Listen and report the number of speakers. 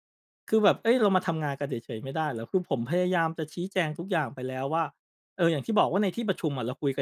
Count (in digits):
1